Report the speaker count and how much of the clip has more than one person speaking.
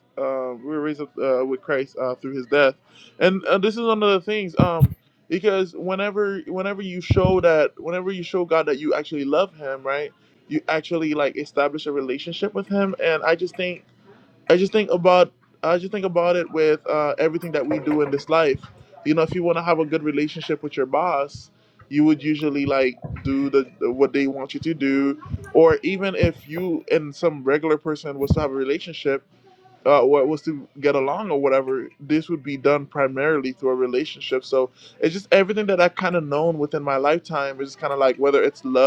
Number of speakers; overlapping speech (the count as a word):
one, no overlap